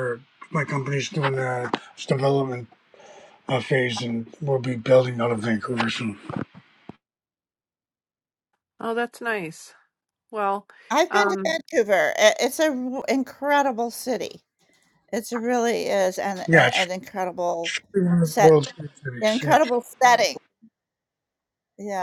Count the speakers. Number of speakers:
3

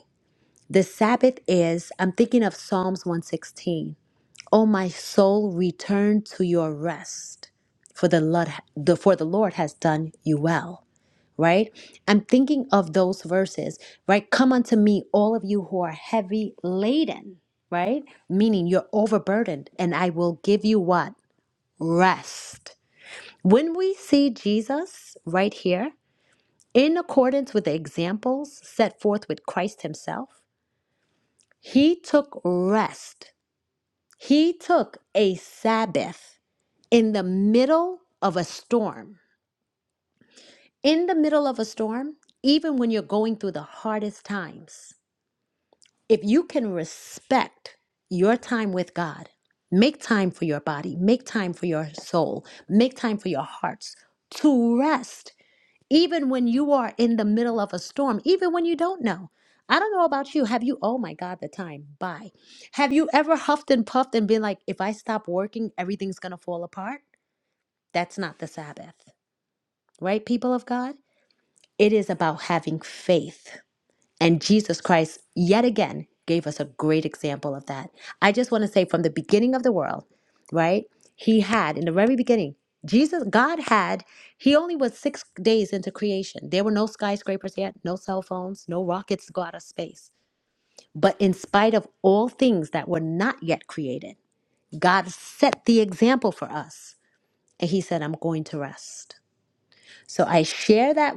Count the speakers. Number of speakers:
1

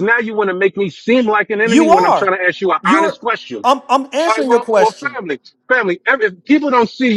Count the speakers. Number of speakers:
2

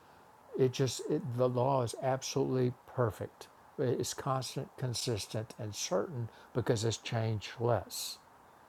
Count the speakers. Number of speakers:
1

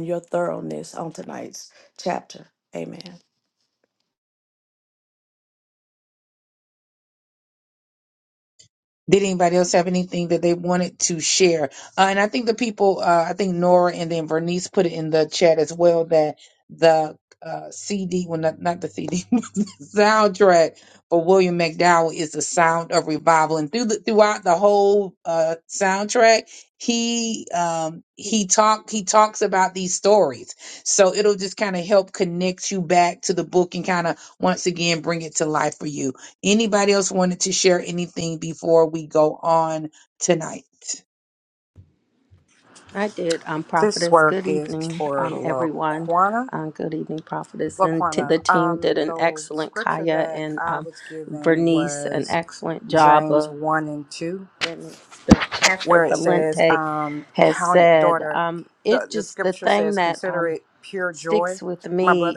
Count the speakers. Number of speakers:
4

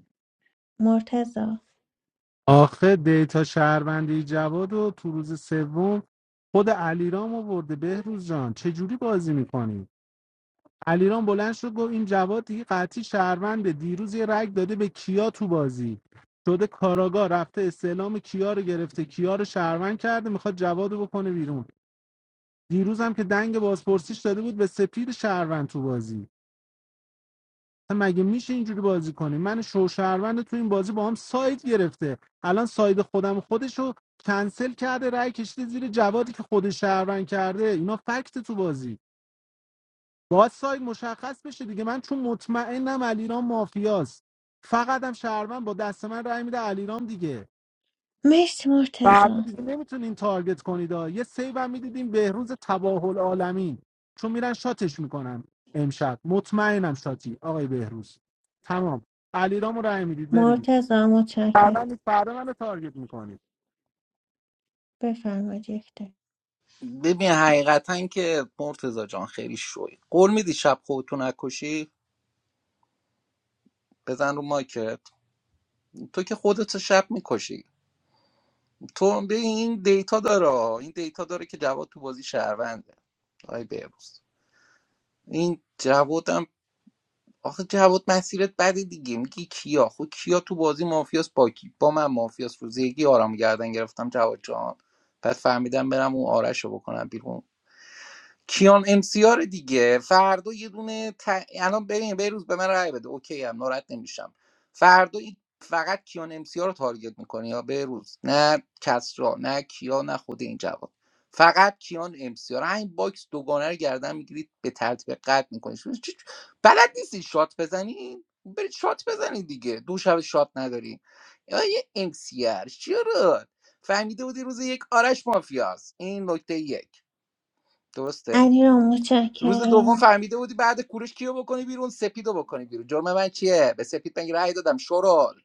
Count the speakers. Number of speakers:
3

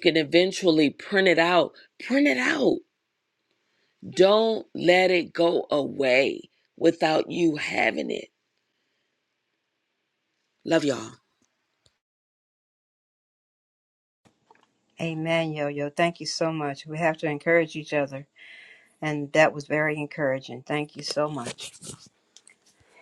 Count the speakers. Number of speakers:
2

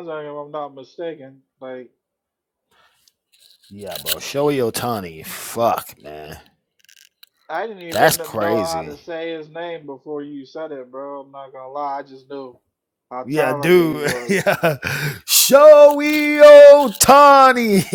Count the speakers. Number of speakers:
2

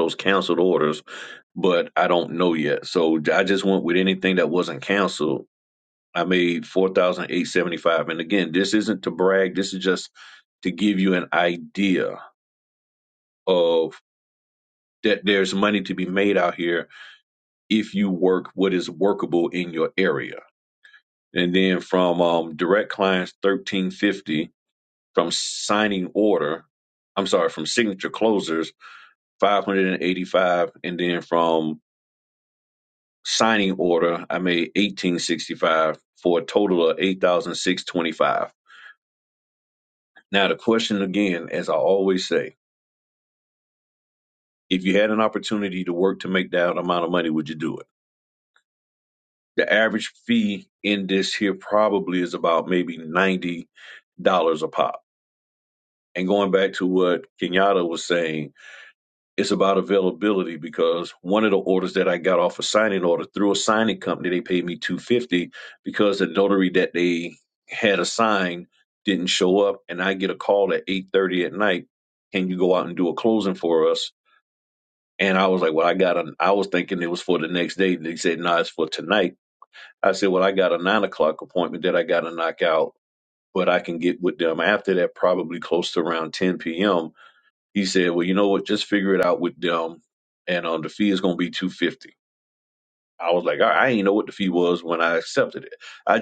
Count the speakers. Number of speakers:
1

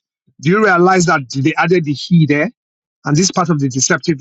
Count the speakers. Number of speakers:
1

